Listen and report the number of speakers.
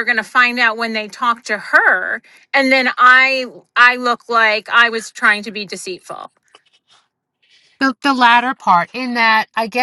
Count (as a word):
two